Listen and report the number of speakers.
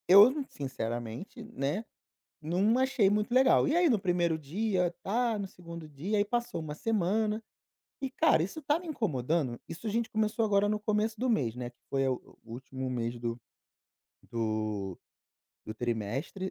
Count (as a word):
one